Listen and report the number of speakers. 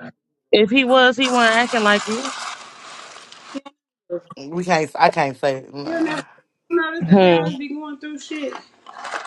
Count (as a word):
three